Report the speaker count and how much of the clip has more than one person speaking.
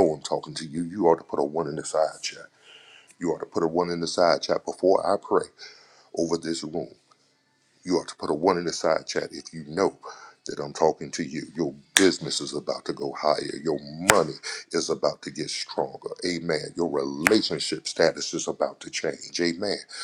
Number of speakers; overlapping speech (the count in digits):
1, no overlap